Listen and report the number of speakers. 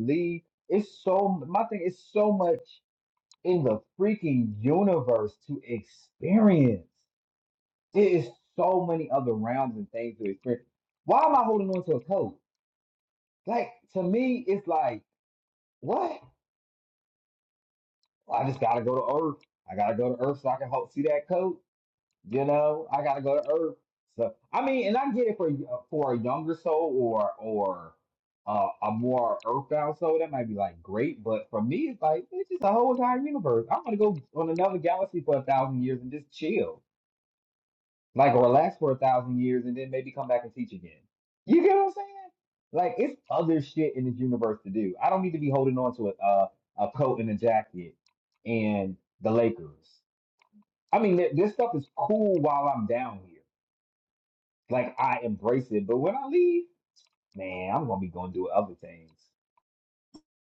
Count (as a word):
one